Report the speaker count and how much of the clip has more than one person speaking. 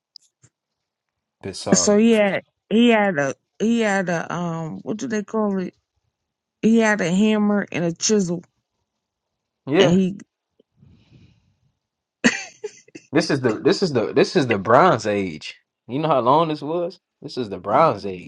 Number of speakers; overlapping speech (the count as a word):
two, about 2%